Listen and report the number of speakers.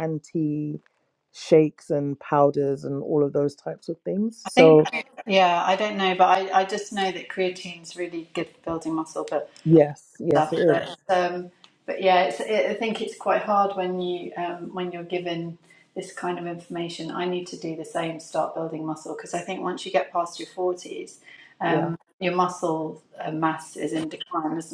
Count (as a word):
two